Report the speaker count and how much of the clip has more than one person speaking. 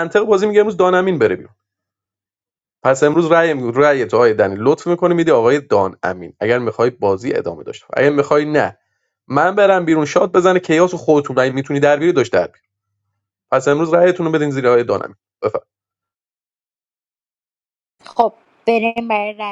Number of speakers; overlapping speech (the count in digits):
2, no overlap